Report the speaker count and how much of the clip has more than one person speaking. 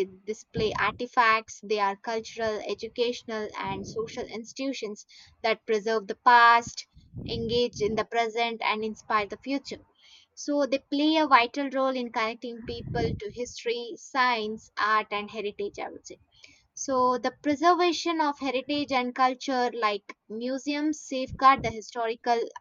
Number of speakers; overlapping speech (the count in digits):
1, no overlap